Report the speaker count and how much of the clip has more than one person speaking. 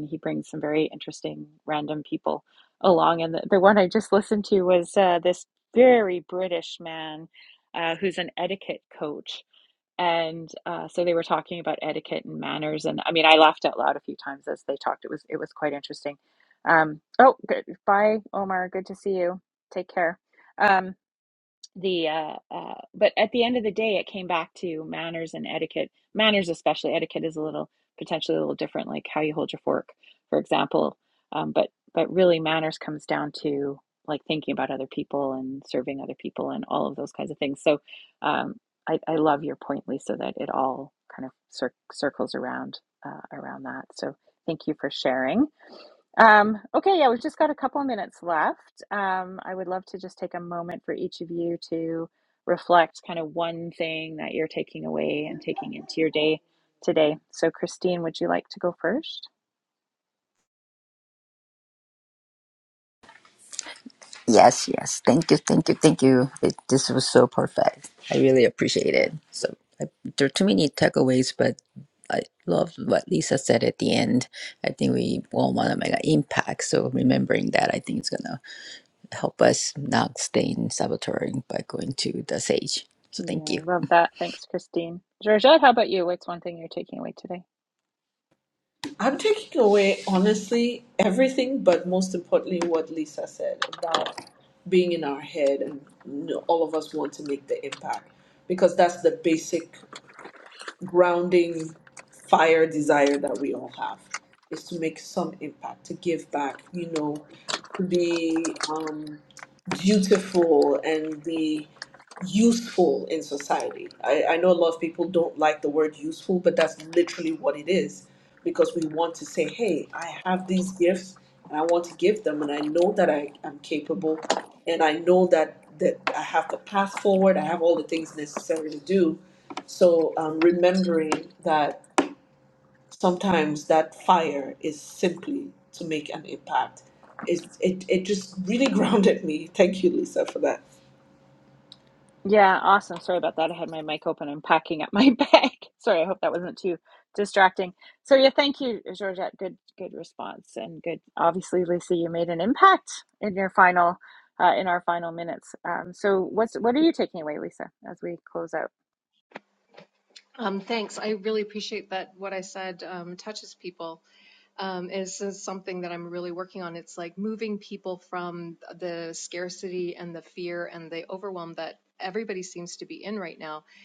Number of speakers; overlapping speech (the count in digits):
4, under 1%